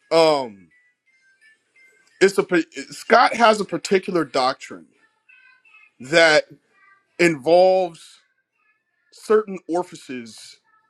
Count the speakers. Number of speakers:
one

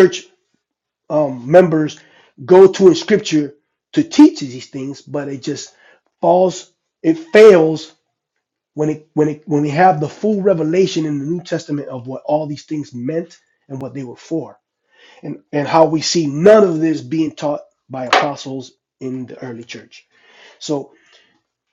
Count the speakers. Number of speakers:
one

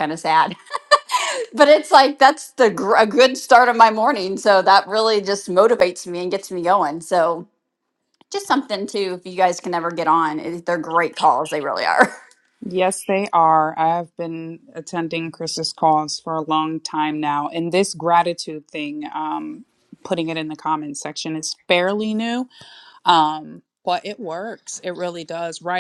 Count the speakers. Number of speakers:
two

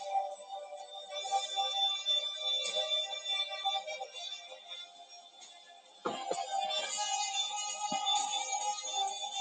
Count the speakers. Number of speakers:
zero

